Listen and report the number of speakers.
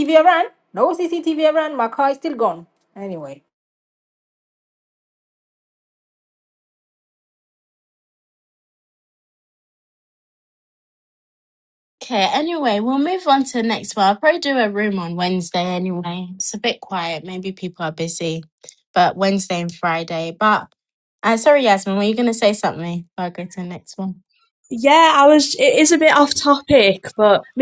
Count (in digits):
3